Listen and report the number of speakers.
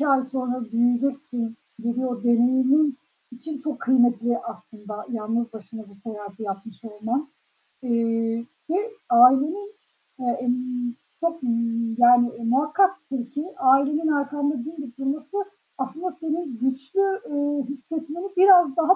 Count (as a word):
one